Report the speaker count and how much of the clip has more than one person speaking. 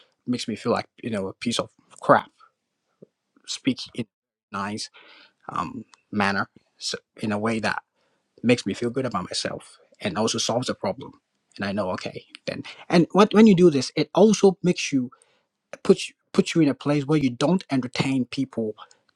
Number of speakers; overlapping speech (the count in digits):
1, no overlap